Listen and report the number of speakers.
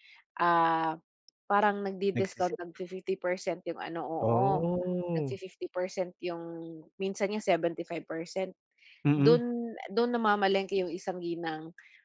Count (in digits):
2